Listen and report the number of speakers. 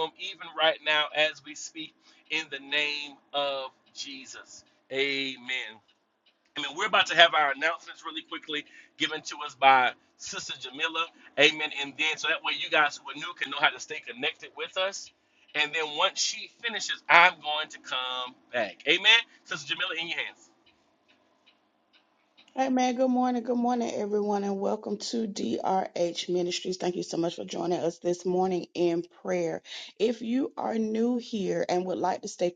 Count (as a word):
two